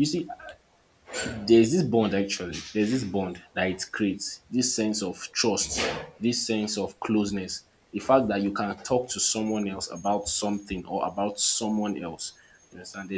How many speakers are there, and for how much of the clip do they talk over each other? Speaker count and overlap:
1, no overlap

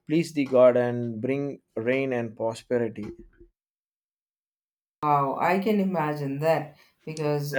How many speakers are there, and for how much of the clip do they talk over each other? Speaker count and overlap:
2, about 1%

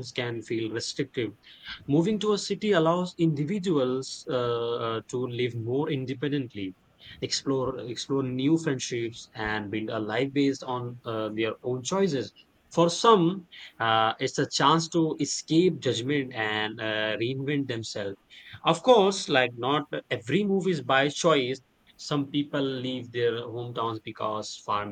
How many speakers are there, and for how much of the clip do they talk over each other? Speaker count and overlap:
1, no overlap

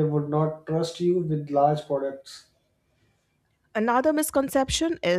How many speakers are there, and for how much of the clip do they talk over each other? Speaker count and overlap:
2, no overlap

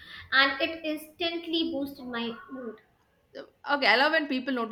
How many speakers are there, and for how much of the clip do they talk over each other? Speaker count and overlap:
2, no overlap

